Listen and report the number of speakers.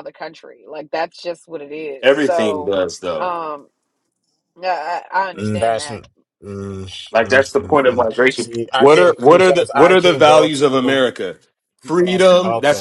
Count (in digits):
3